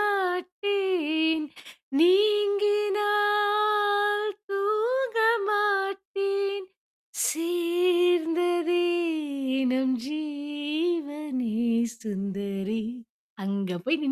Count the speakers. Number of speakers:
one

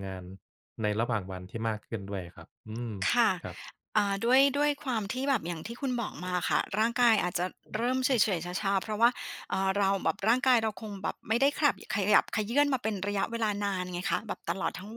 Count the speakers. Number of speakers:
two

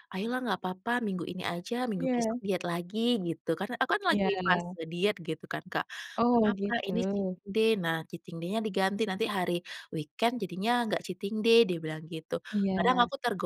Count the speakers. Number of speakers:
two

